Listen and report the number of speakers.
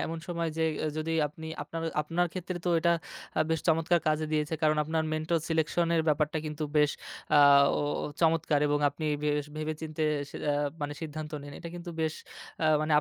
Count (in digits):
1